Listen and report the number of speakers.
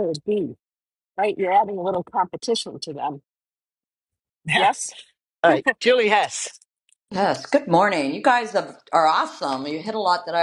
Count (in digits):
3